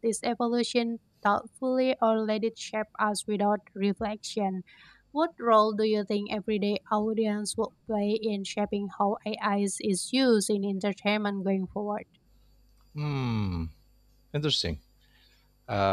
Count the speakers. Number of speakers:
2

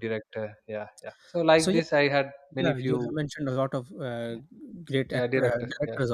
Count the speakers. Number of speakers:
2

